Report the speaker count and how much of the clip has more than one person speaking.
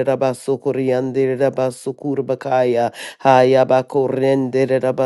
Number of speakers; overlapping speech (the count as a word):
one, no overlap